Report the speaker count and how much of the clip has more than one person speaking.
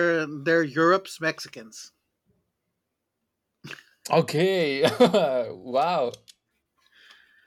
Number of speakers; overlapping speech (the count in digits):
2, no overlap